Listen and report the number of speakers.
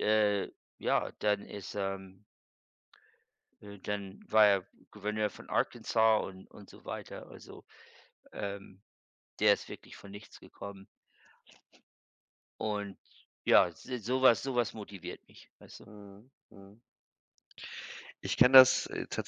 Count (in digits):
2